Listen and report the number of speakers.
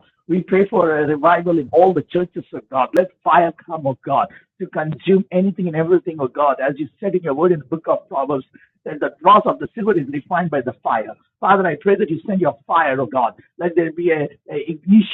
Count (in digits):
1